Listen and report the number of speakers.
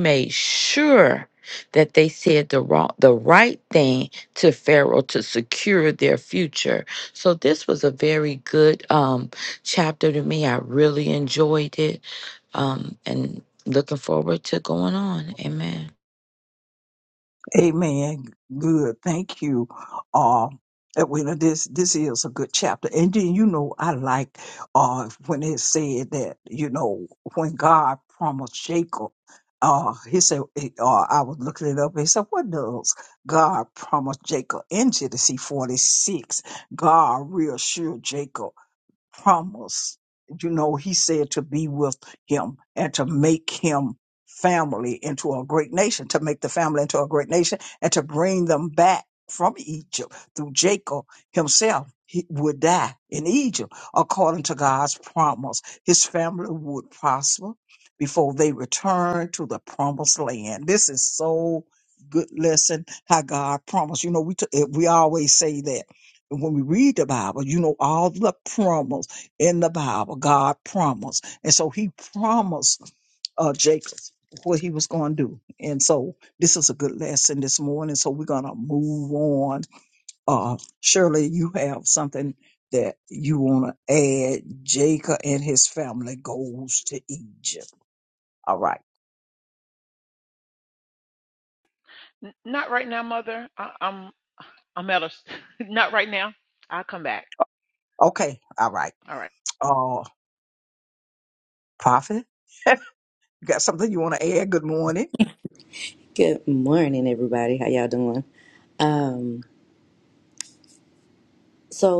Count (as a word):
four